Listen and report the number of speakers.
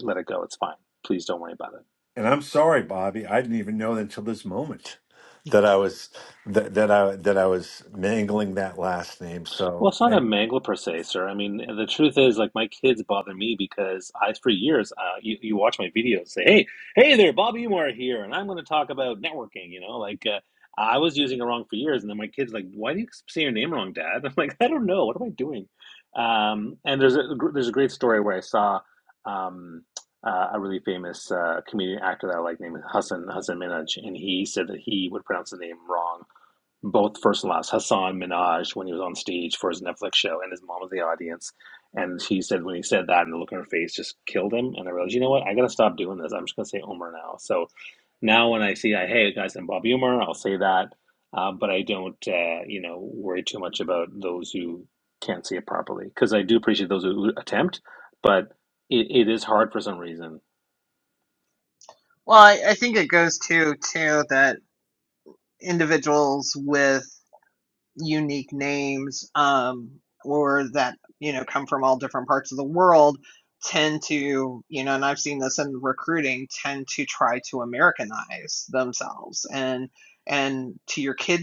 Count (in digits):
3